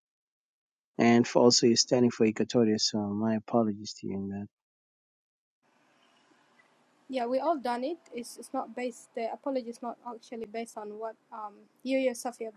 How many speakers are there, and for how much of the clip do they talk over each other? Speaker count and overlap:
2, no overlap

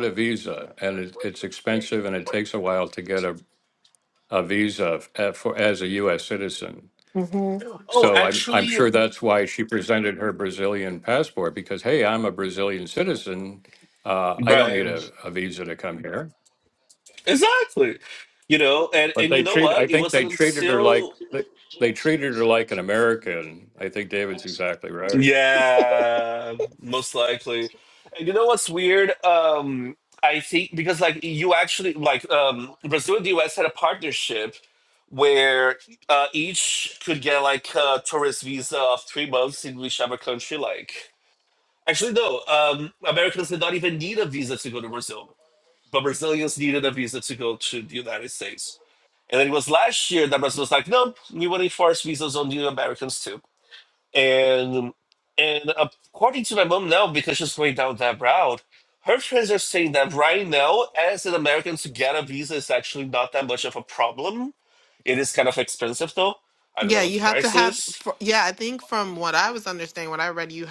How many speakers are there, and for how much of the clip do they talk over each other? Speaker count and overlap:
3, about 7%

